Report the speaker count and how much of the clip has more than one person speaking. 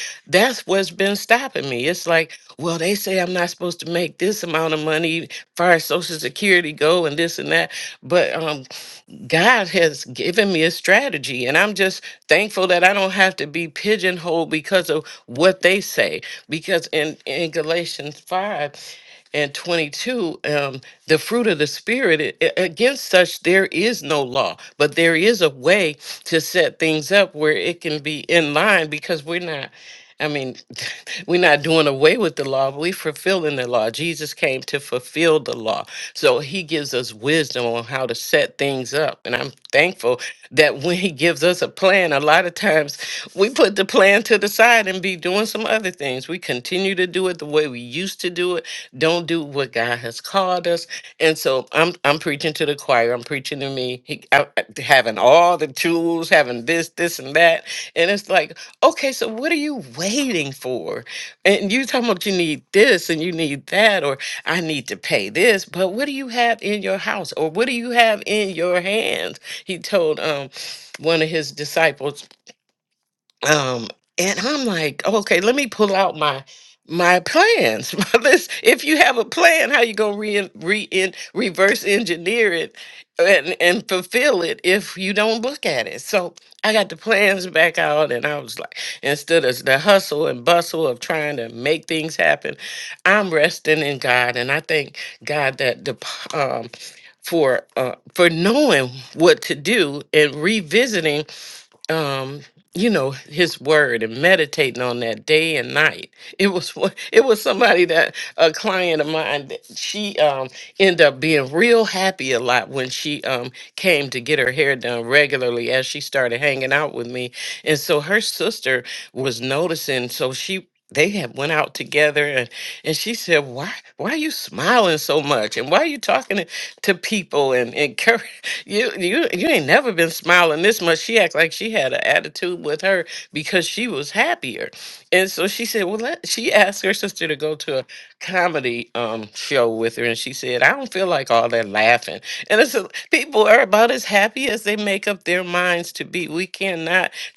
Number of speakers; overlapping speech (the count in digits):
1, no overlap